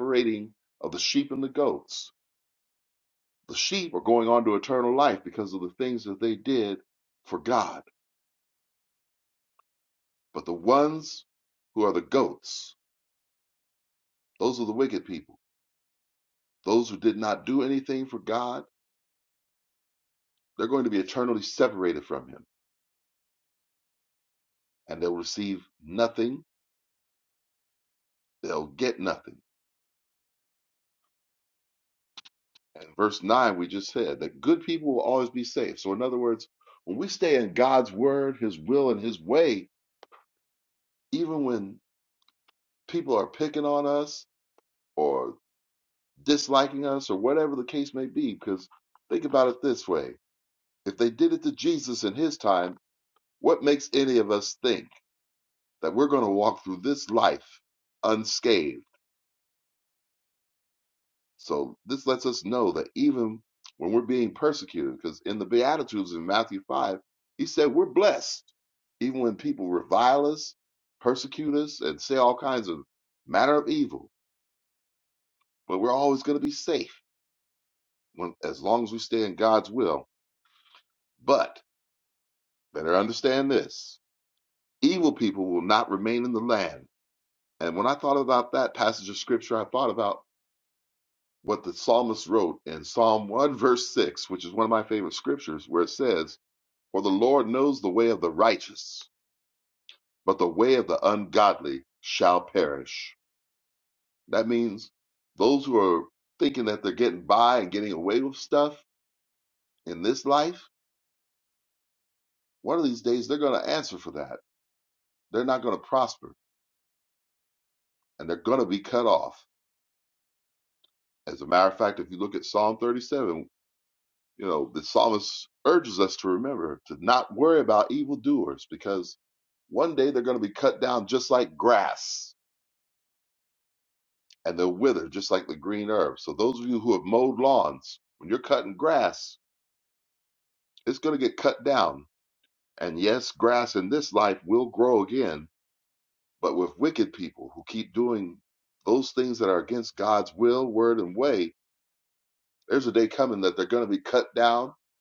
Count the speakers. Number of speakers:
1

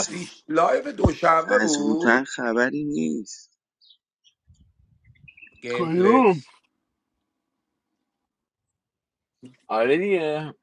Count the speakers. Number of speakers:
3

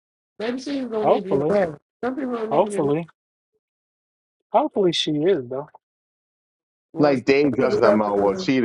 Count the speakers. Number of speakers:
3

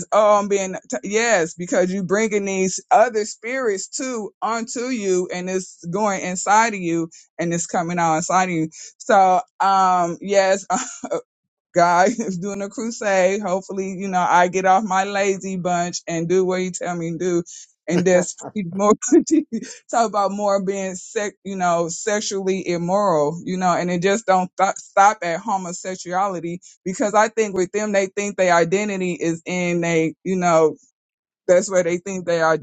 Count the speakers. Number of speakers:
1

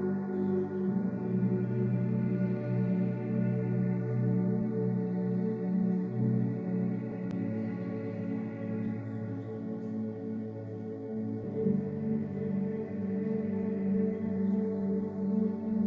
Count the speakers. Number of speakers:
0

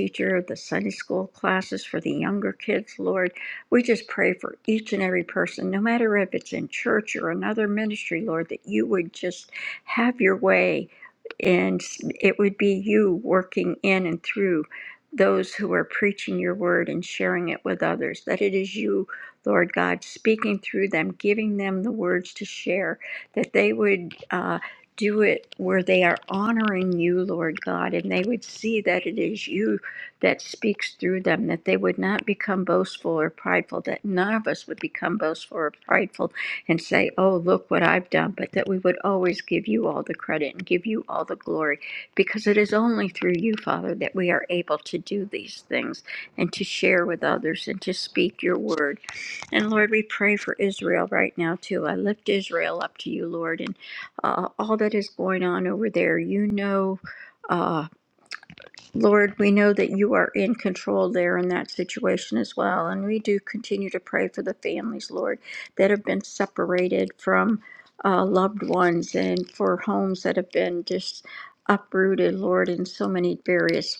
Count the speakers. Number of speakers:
1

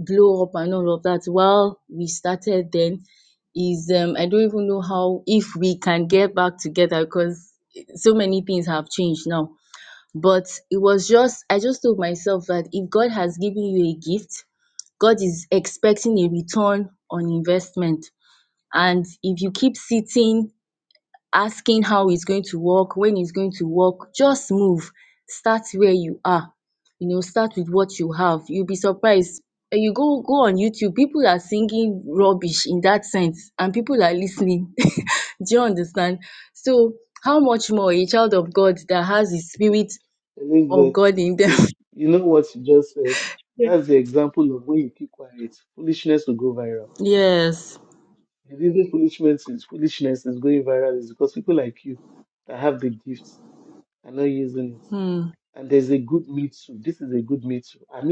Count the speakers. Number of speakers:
2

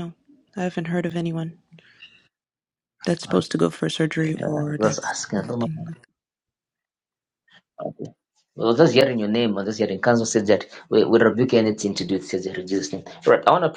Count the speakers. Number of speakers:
2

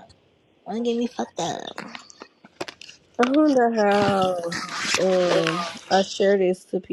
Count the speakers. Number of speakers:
2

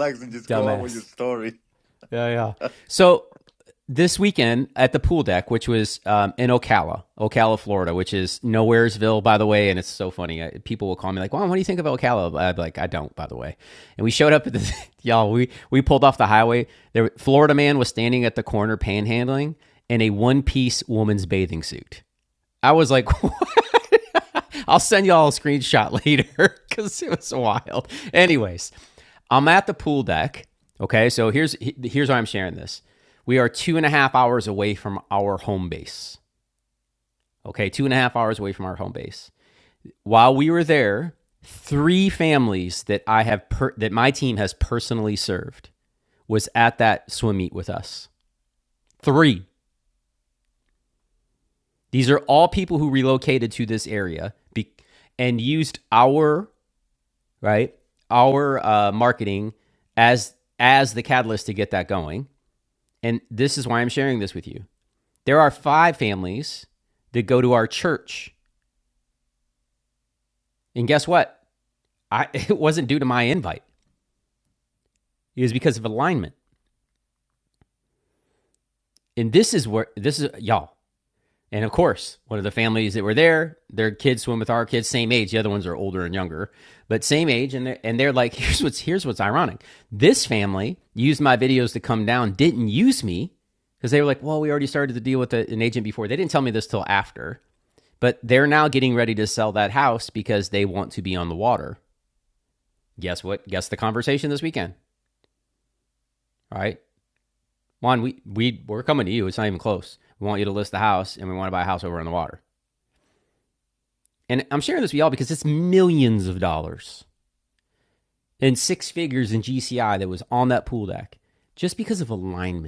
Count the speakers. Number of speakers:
2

